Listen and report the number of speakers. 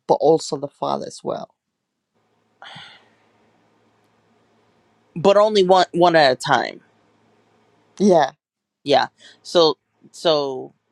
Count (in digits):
2